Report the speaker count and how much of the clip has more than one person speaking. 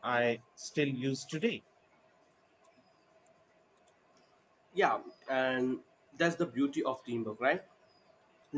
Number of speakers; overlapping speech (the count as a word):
two, no overlap